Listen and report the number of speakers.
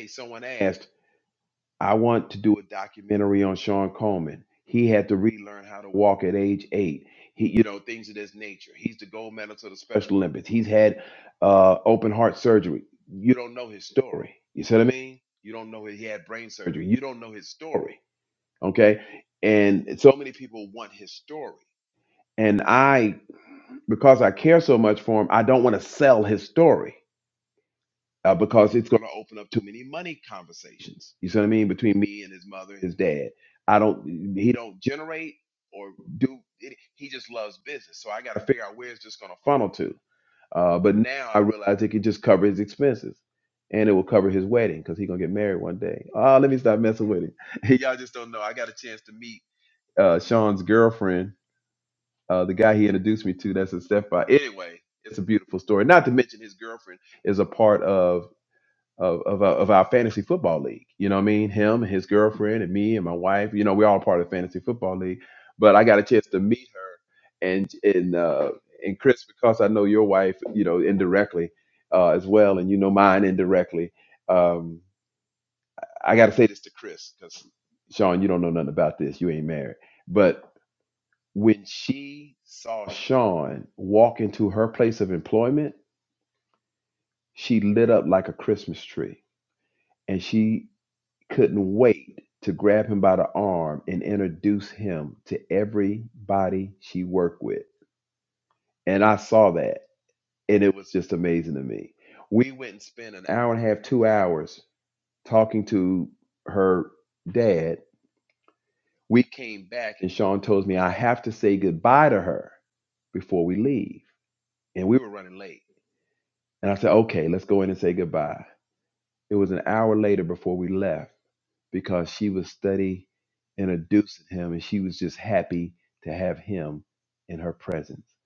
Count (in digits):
1